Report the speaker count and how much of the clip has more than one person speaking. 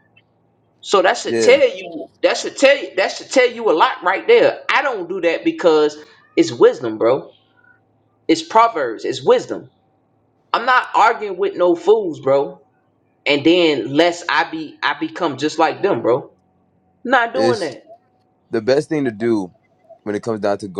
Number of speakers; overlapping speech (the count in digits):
2, about 3%